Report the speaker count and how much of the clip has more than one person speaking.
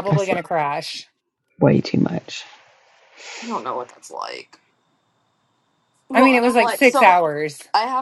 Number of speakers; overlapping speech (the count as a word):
three, about 18%